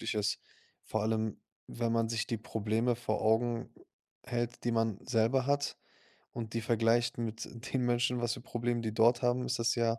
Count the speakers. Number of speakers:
1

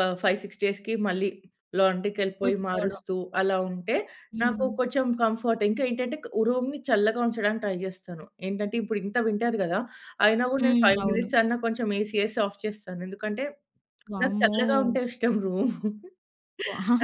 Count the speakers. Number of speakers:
2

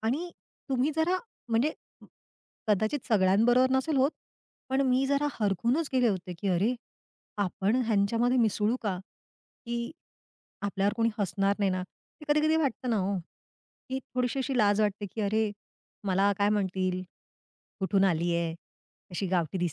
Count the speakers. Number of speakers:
1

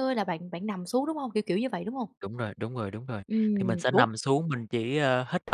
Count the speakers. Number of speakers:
2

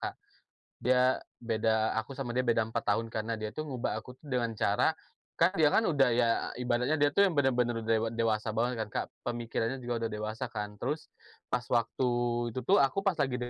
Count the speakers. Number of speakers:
1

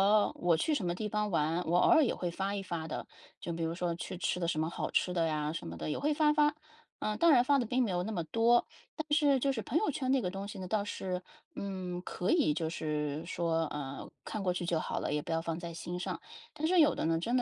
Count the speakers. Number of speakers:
1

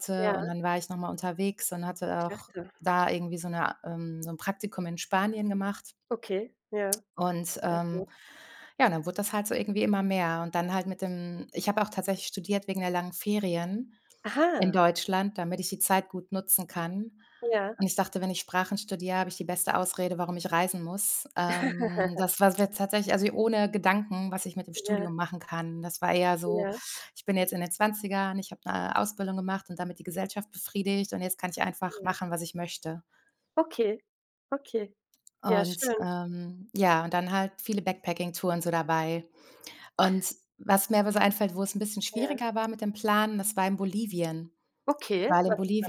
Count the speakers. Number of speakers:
2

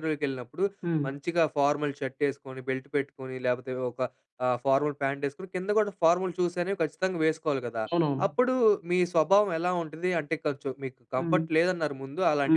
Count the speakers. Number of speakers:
2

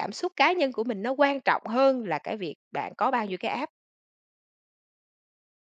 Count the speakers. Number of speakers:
1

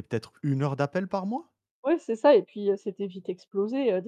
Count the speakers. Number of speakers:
2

